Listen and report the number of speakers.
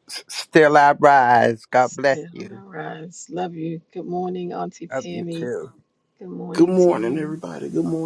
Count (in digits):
3